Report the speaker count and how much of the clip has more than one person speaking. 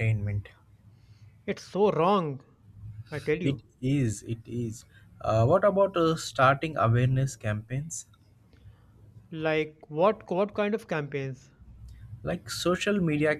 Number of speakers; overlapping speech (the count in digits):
2, about 1%